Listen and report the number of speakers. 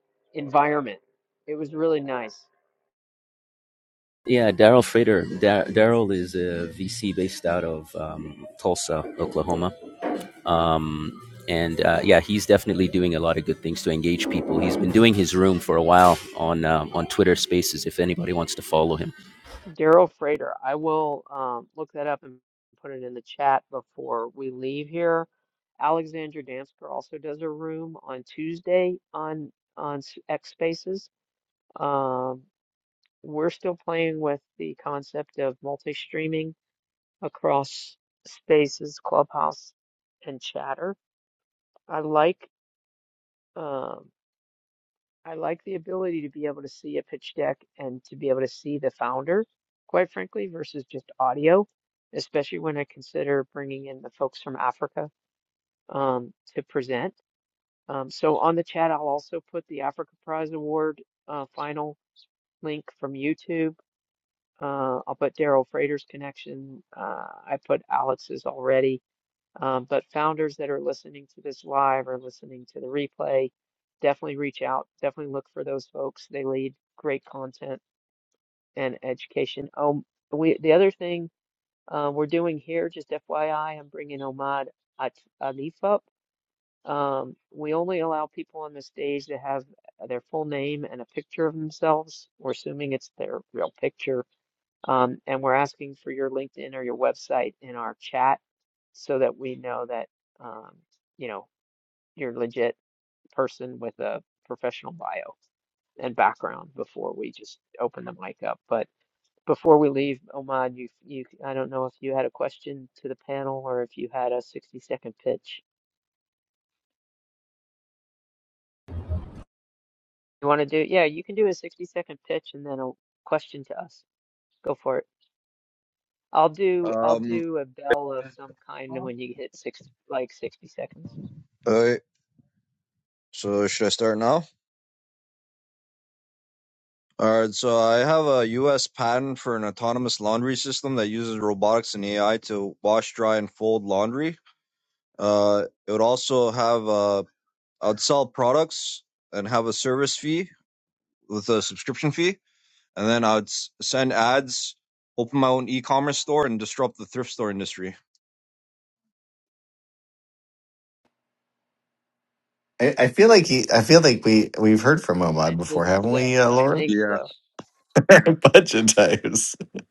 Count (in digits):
4